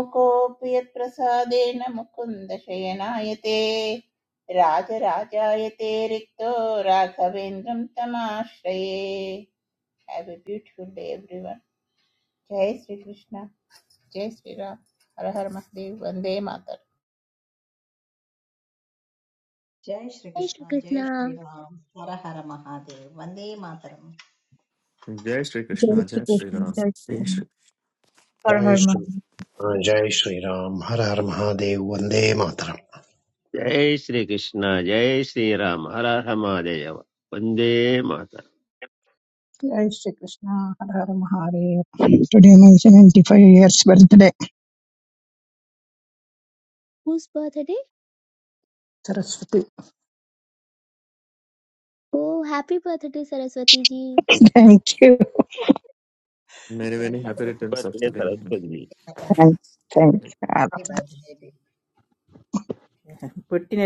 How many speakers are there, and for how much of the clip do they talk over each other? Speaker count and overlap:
eight, about 6%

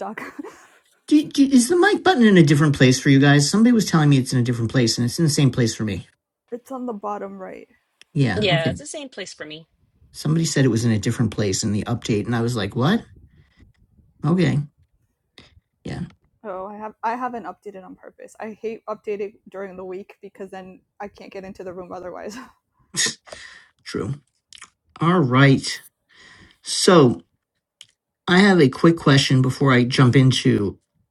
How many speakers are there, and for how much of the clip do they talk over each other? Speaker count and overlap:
three, about 1%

